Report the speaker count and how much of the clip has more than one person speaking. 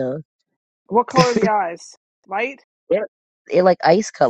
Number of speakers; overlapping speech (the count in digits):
2, no overlap